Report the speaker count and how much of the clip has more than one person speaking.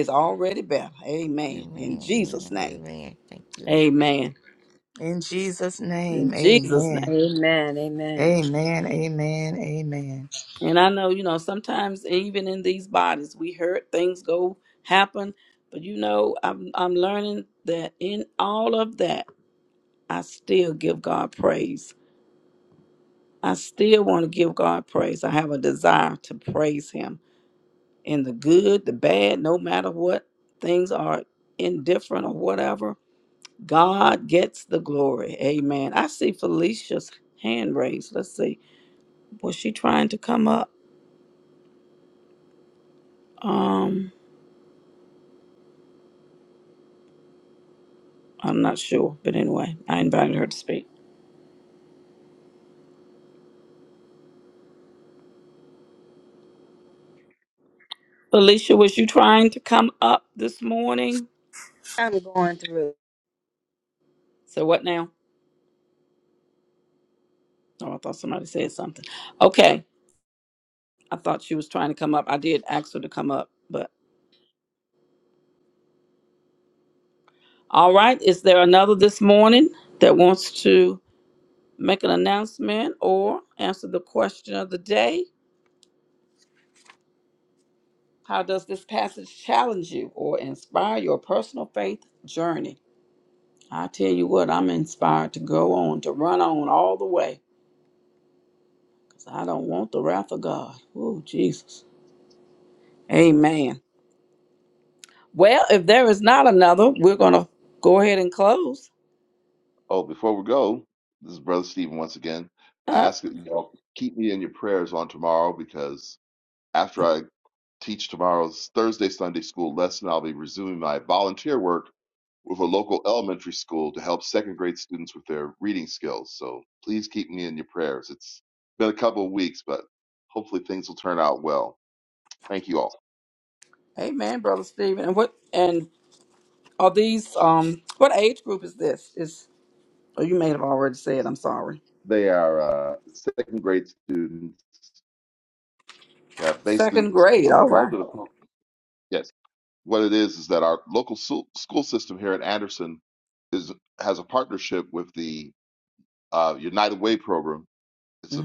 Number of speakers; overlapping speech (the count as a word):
five, about 2%